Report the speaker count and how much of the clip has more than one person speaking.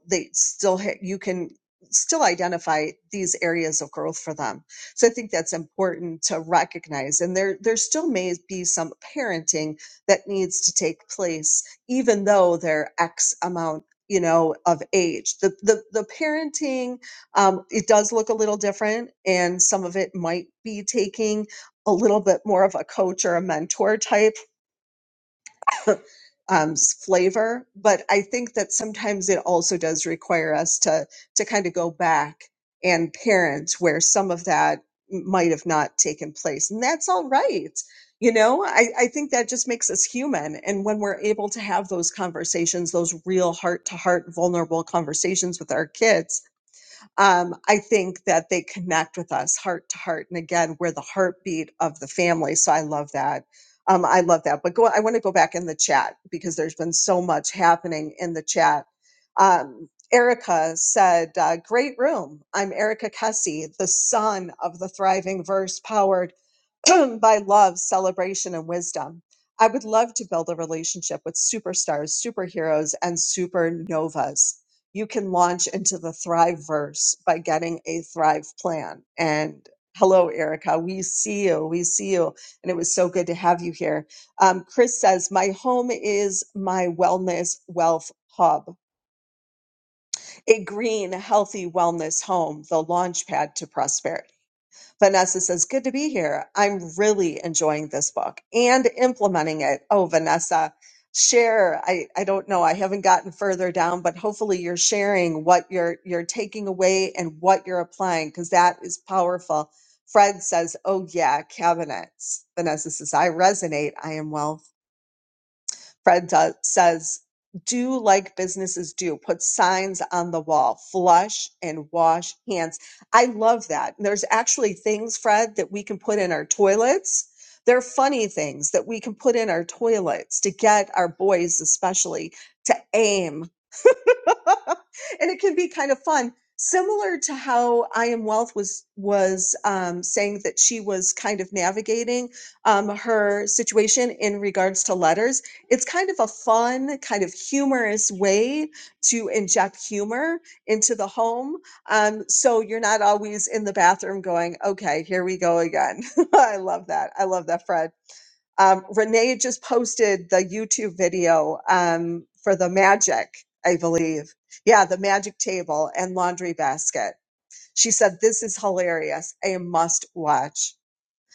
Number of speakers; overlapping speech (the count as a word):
one, no overlap